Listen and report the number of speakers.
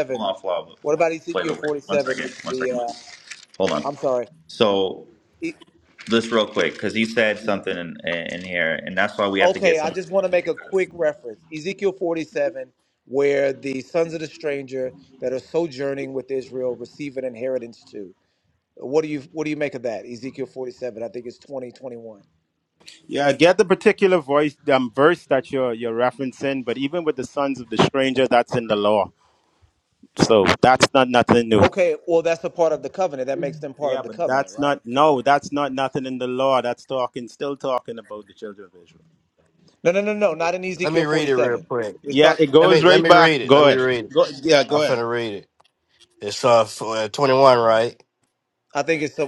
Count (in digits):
4